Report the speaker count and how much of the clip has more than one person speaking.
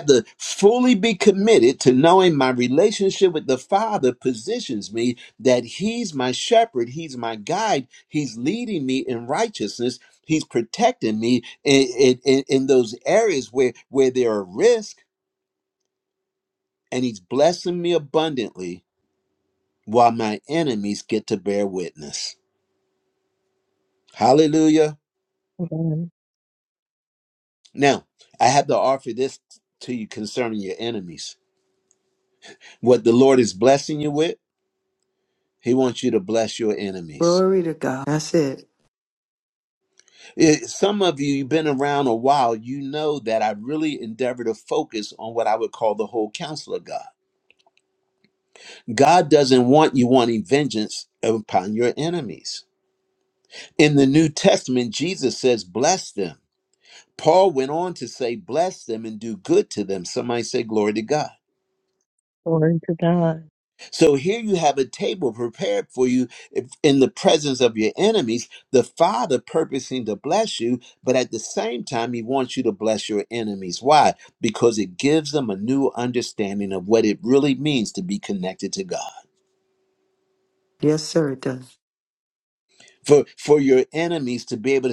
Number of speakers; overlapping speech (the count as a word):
three, under 1%